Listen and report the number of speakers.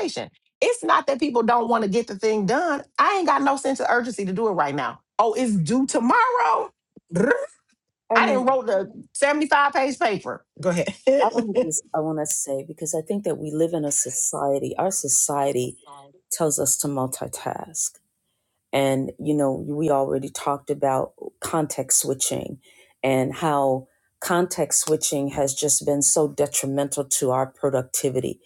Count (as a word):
two